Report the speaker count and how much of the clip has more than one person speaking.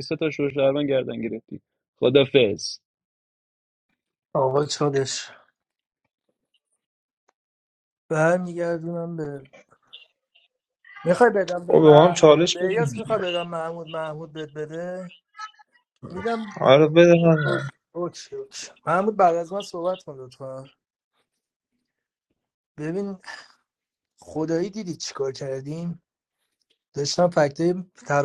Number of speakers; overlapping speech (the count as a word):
three, about 5%